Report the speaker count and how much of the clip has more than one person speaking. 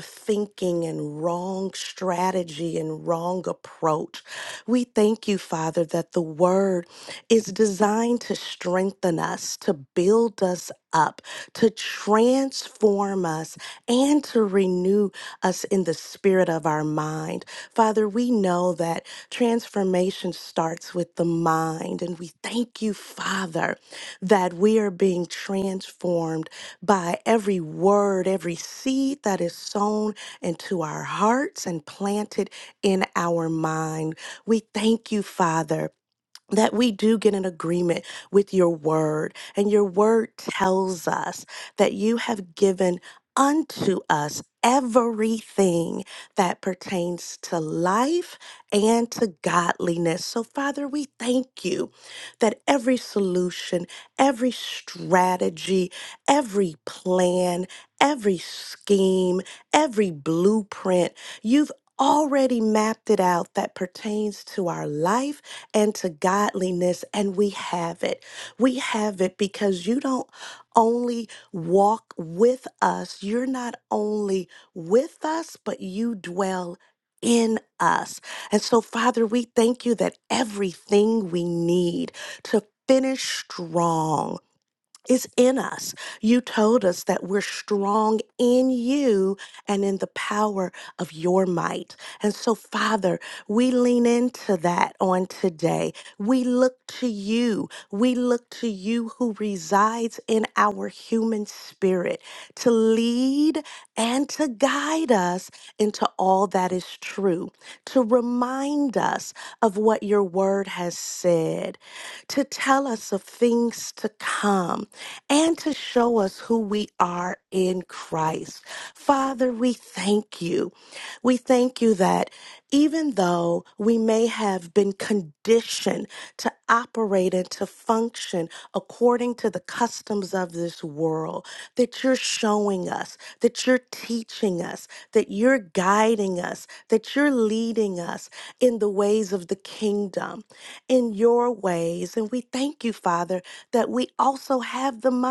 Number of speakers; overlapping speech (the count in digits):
1, no overlap